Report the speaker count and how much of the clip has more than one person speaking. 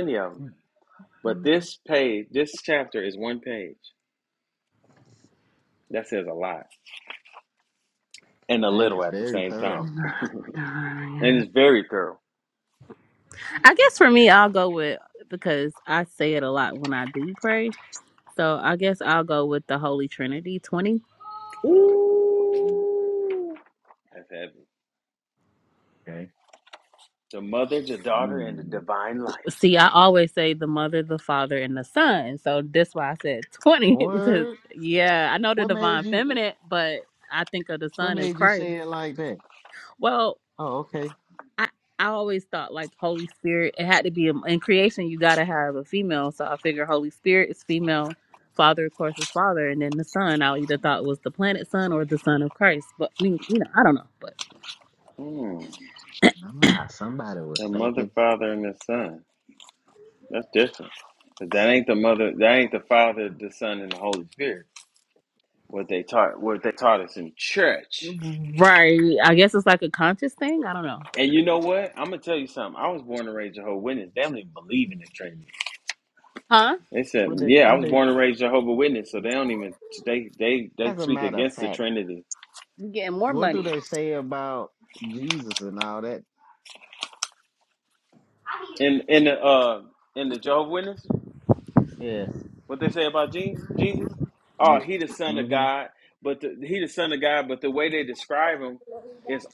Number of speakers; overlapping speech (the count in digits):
3, about 8%